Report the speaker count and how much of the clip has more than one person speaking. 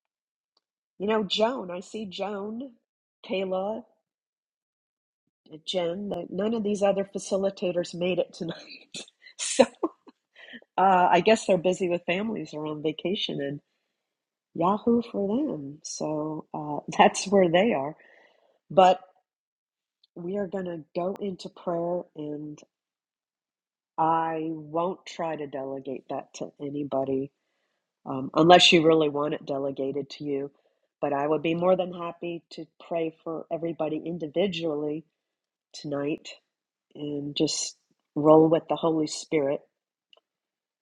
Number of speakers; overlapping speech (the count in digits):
1, no overlap